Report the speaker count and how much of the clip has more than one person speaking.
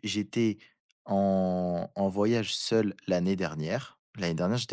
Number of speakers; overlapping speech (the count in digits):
1, no overlap